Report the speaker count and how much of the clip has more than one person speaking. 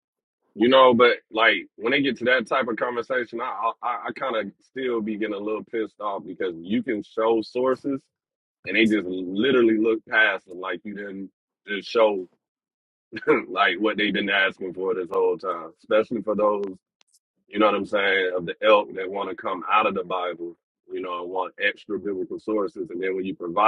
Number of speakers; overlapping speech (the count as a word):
one, no overlap